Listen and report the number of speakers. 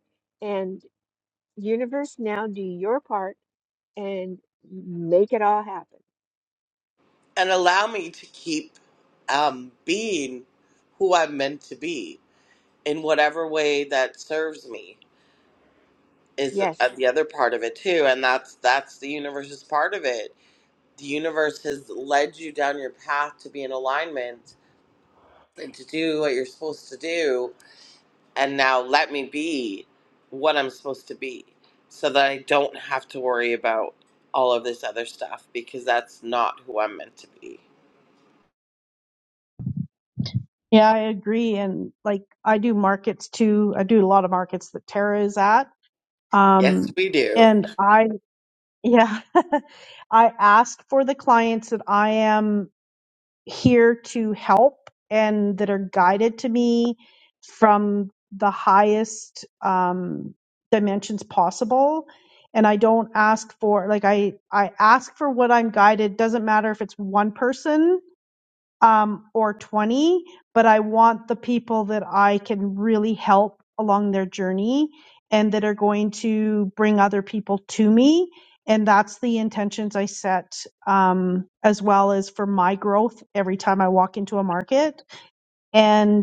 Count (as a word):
three